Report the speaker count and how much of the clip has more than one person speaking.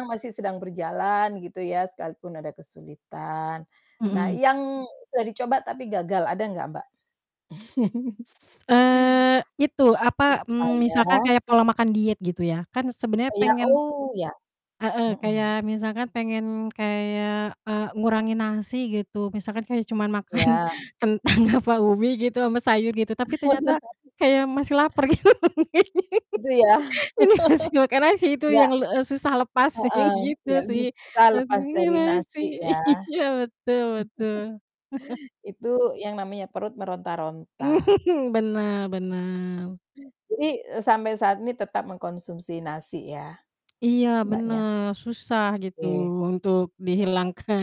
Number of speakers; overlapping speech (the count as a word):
two, about 10%